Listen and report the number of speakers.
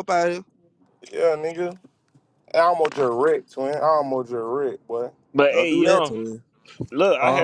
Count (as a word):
three